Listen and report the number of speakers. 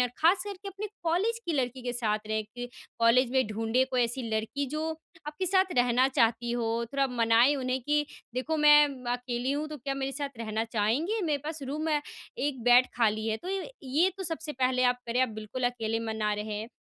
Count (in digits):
1